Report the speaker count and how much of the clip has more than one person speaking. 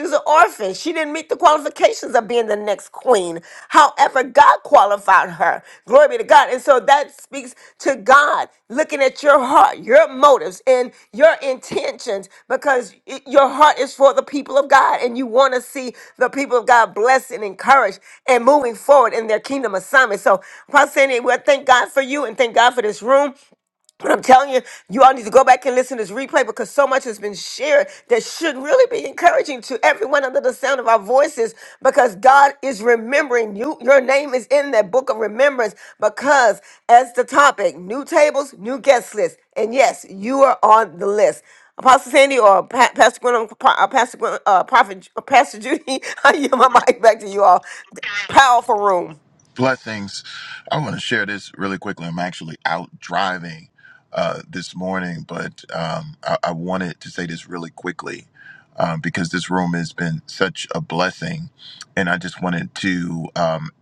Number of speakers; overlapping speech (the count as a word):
two, no overlap